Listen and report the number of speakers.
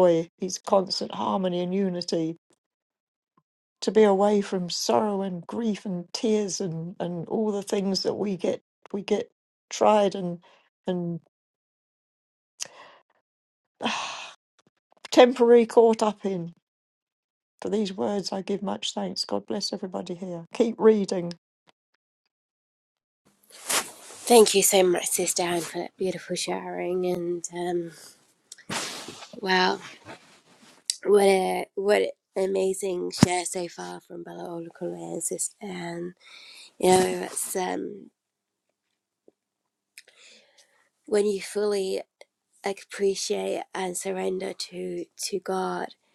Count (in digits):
2